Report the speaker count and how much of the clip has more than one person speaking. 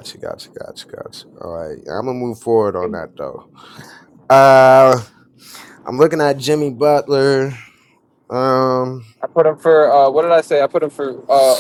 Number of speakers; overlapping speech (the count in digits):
2, no overlap